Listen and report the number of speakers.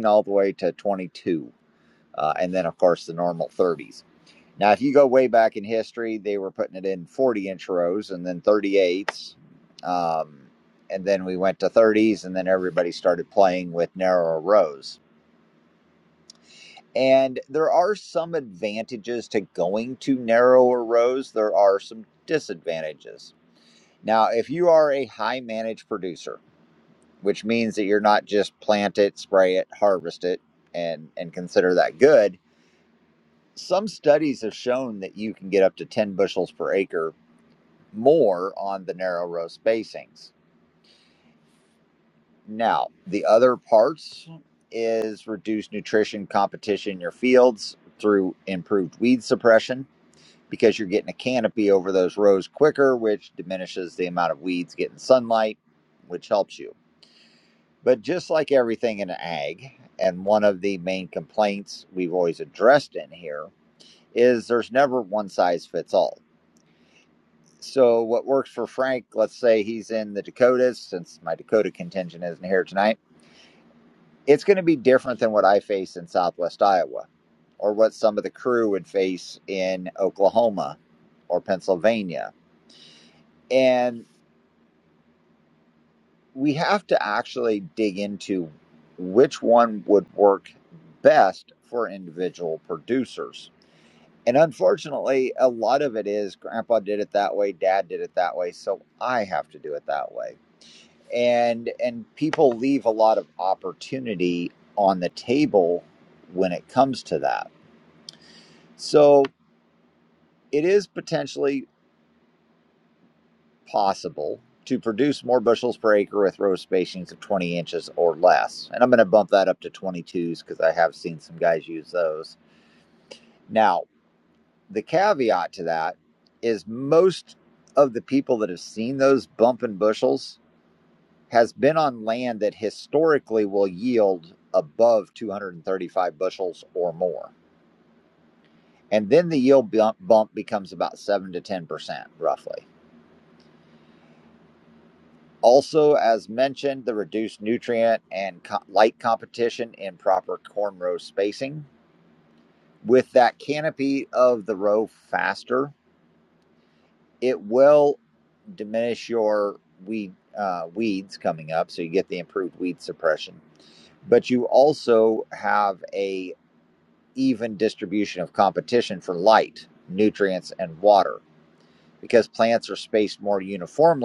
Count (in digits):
1